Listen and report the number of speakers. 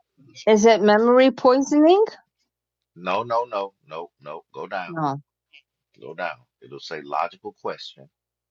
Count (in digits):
2